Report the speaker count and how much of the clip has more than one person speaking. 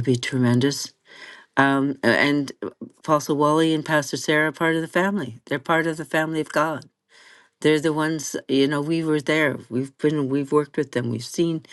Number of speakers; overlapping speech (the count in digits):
1, no overlap